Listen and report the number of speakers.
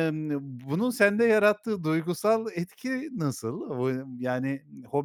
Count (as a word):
one